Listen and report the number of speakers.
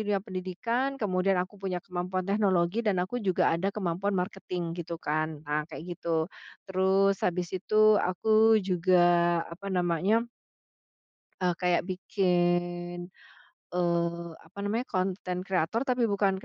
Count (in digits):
1